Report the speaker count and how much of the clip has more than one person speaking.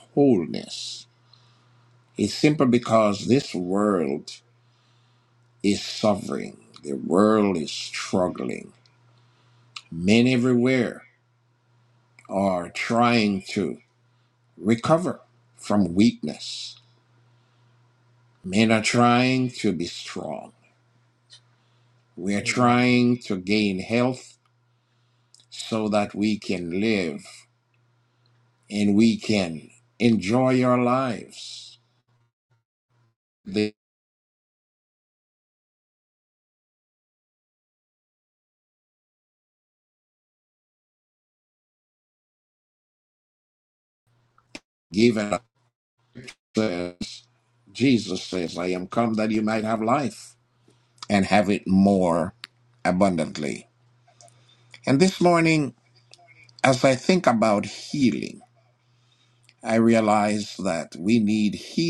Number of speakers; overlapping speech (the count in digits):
1, no overlap